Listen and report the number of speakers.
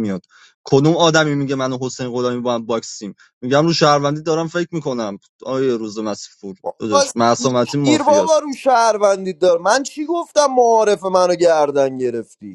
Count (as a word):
two